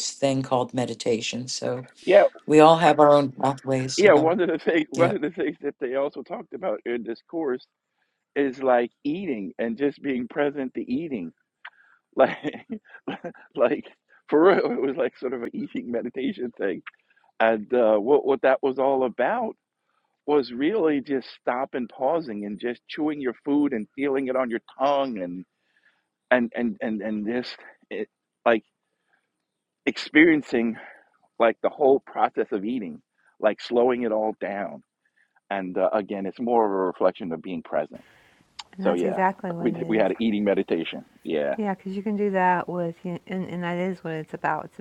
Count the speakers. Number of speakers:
3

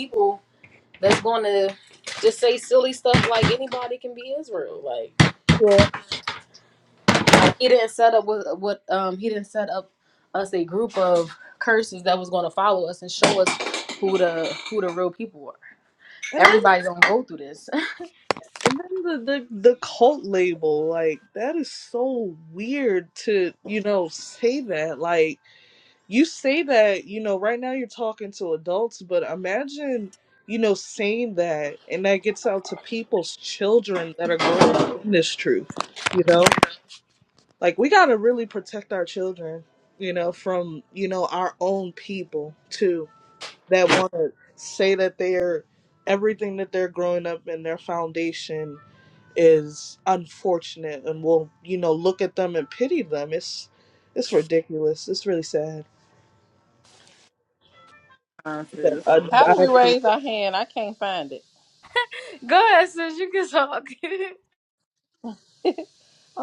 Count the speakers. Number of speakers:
3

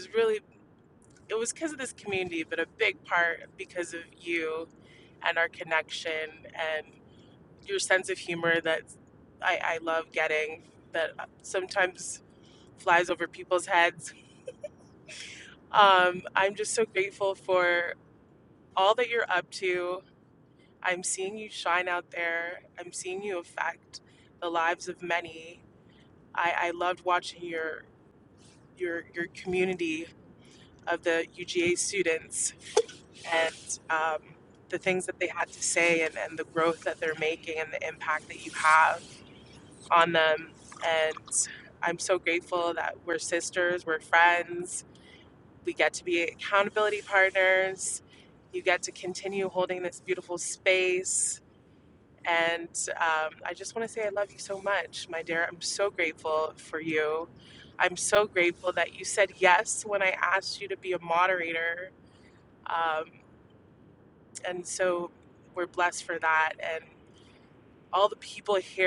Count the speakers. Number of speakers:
1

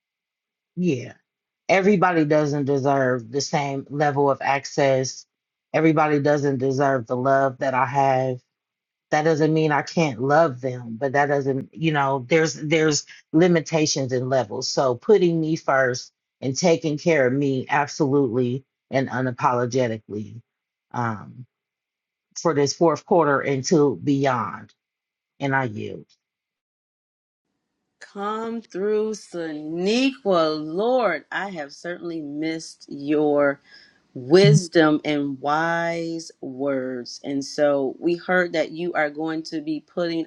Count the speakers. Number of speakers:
2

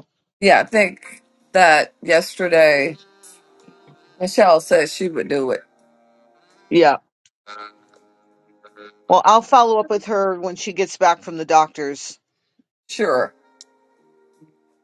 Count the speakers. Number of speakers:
2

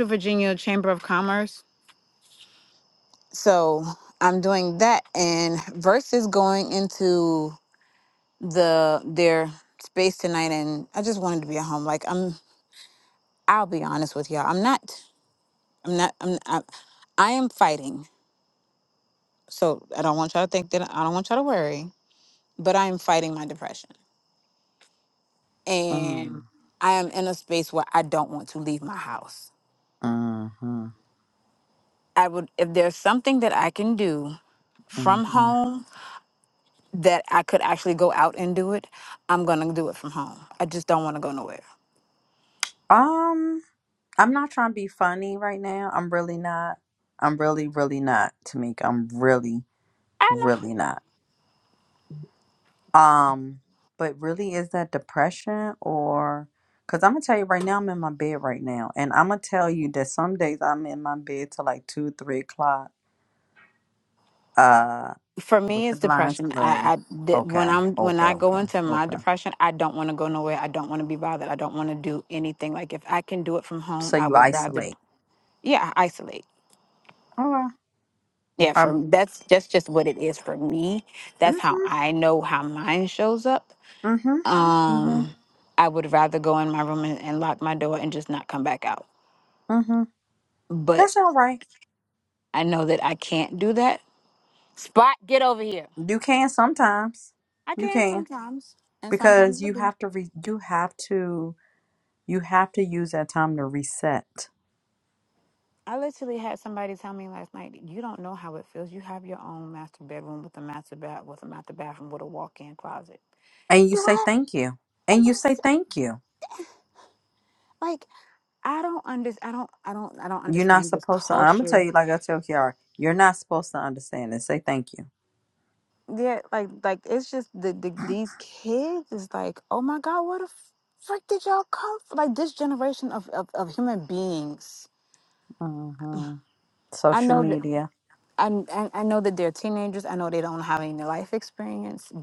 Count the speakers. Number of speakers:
2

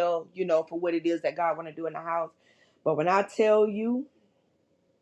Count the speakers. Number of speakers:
1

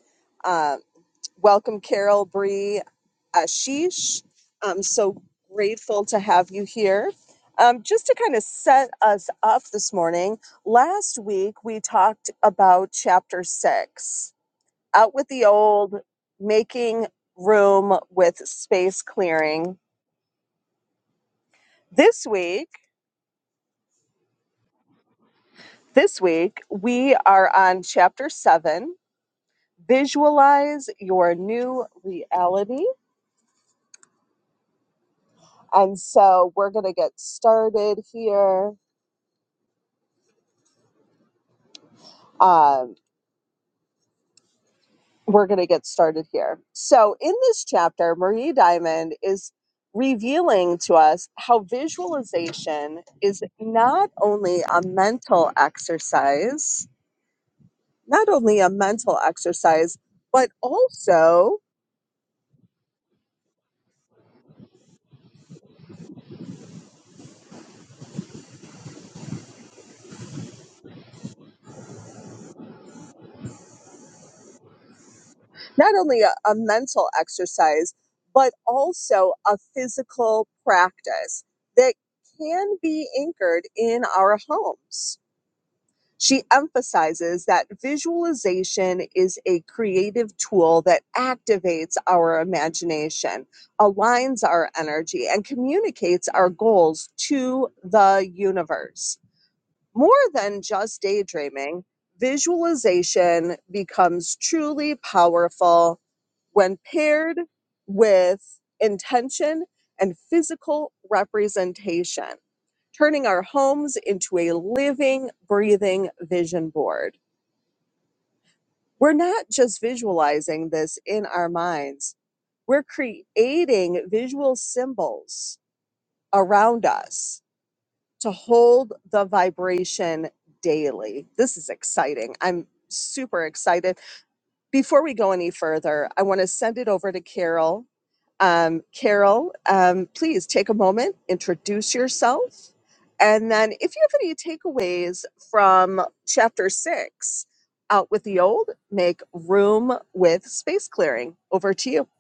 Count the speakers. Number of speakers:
1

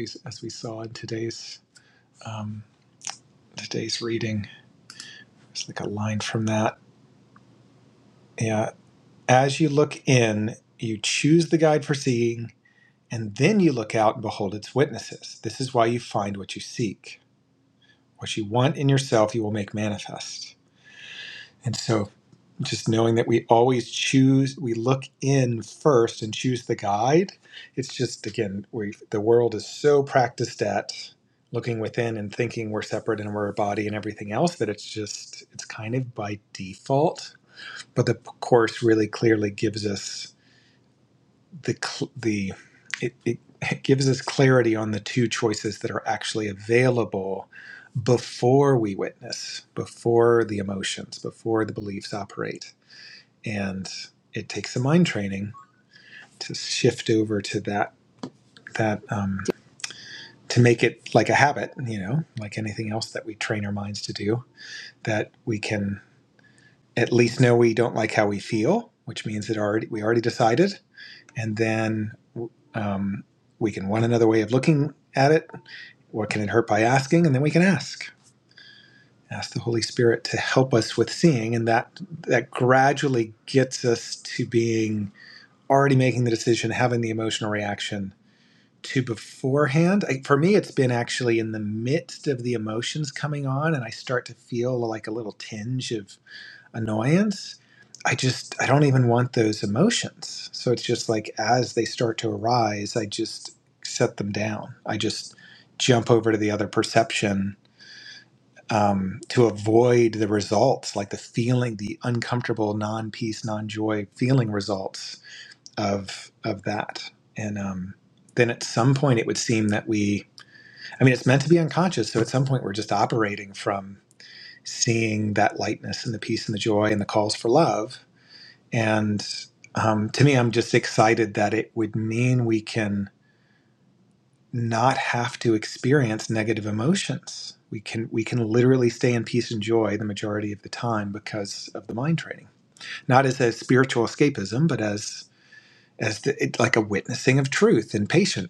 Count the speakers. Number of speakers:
1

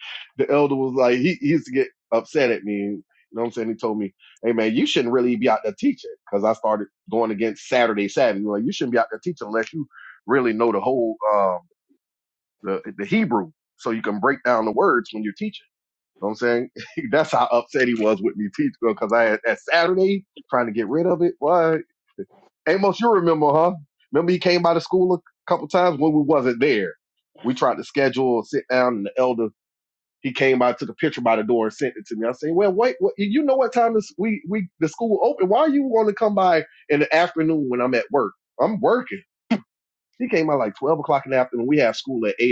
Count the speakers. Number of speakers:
1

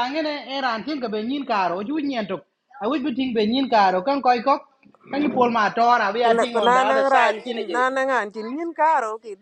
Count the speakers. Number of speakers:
2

